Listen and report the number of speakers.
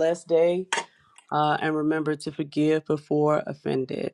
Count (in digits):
1